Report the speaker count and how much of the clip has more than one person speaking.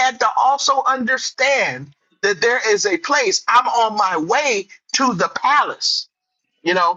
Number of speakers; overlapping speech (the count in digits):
1, no overlap